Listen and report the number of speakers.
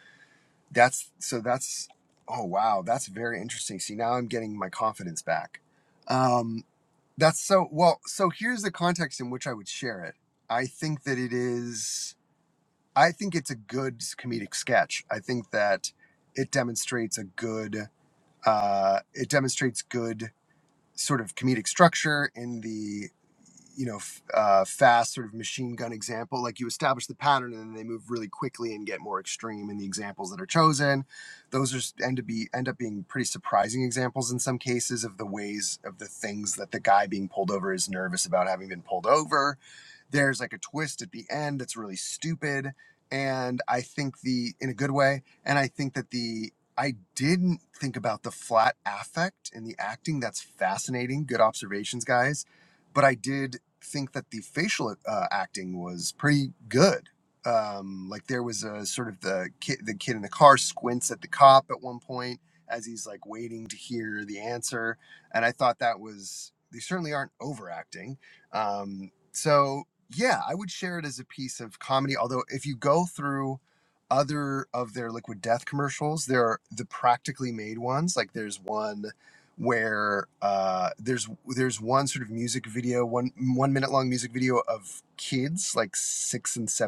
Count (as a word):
one